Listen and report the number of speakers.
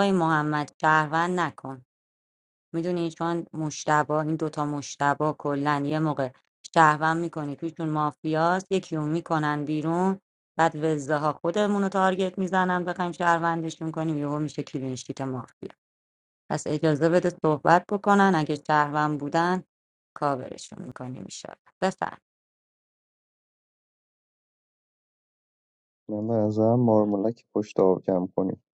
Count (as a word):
two